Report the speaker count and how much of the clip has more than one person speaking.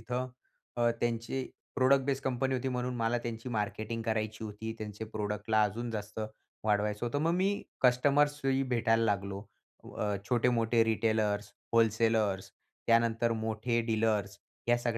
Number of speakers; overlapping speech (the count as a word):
one, no overlap